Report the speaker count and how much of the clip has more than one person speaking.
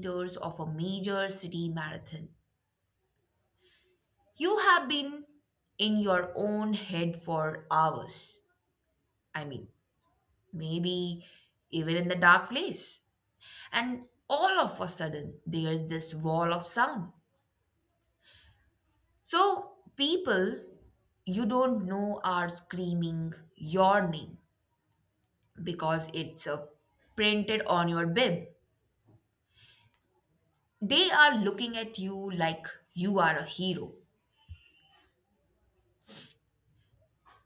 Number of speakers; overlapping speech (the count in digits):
1, no overlap